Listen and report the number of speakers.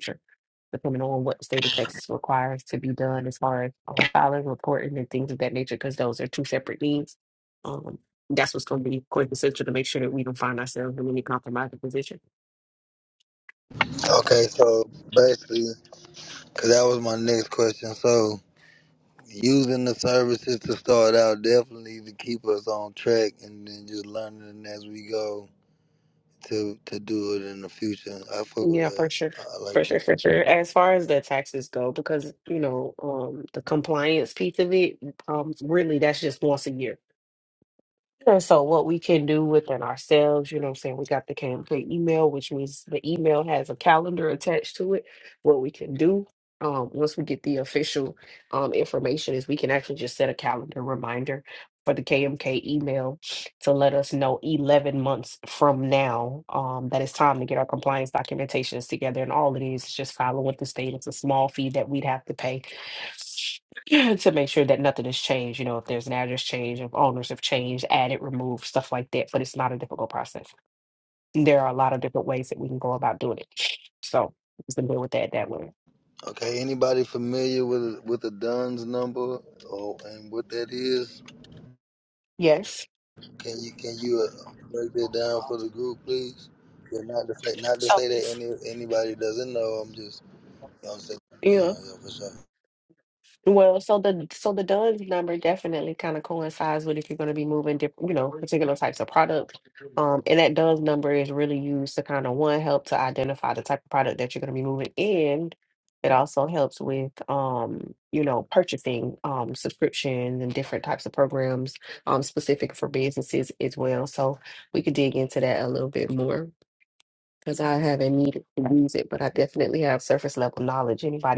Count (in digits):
2